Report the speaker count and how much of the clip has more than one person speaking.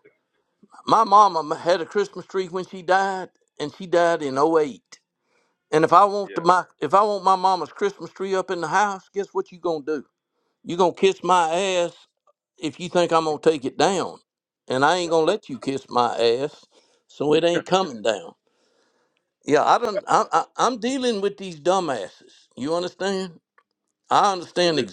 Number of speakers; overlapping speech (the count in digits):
1, no overlap